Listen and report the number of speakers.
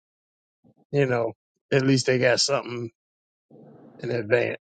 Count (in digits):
1